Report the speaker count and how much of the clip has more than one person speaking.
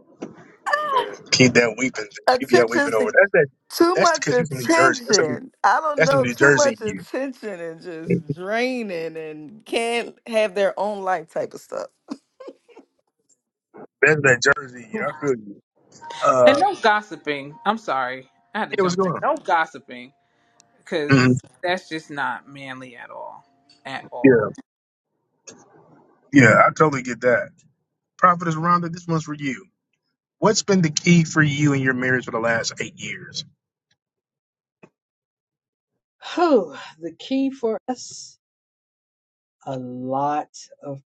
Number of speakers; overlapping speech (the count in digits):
4, about 10%